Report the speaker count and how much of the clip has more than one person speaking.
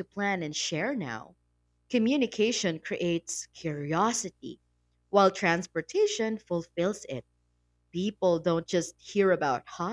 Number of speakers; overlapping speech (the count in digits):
1, no overlap